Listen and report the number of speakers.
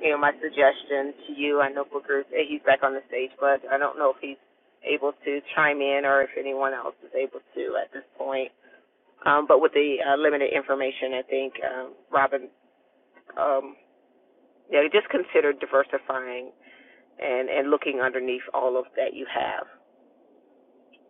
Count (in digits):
1